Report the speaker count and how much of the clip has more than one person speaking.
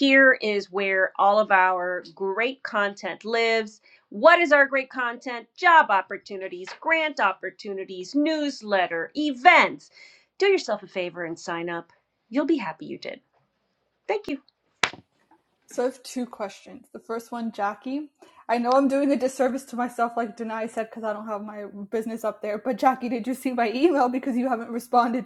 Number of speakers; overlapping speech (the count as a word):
two, no overlap